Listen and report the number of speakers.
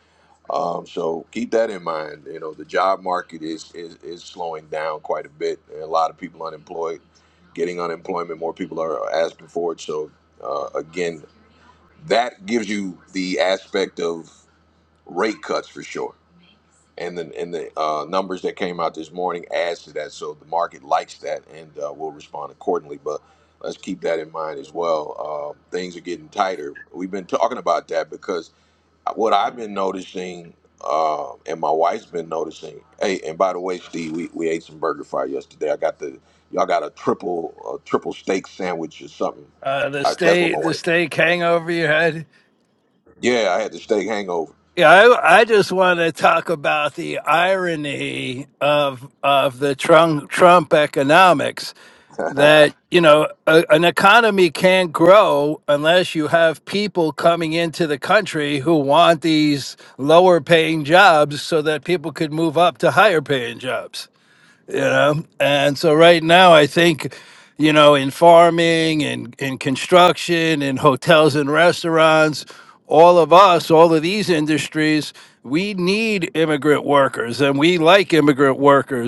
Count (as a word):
two